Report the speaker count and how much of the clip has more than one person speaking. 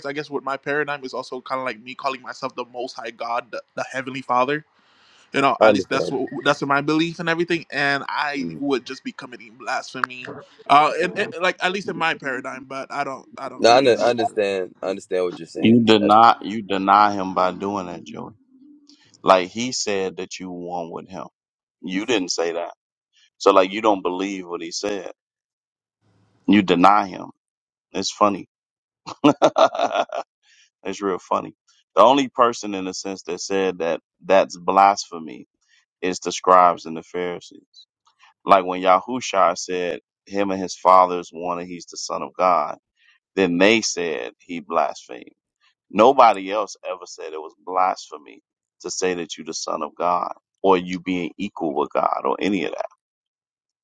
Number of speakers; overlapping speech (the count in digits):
3, about 3%